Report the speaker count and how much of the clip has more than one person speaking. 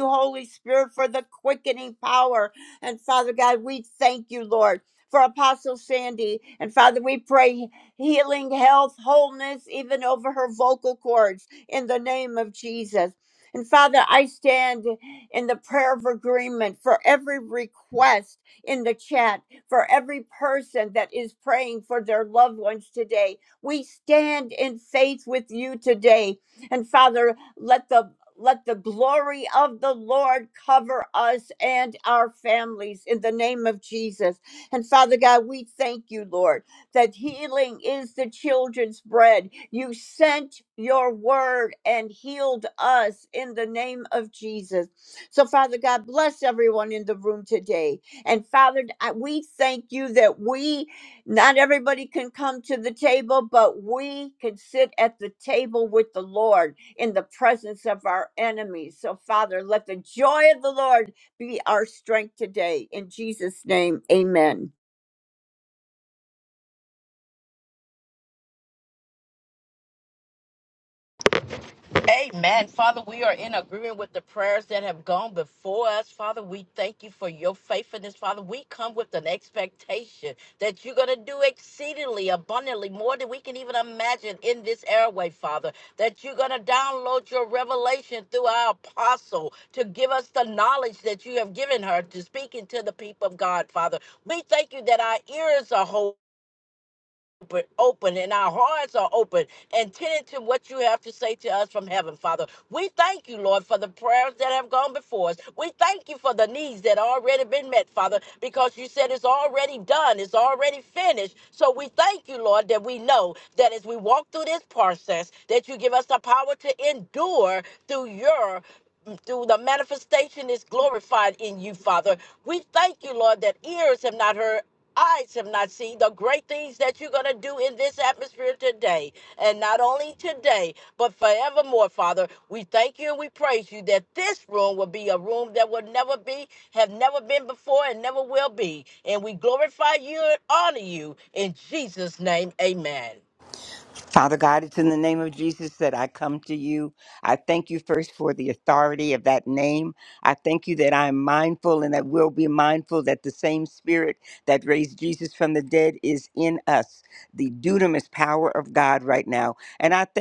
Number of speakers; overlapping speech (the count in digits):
3, no overlap